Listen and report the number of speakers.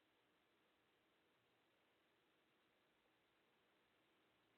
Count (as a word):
zero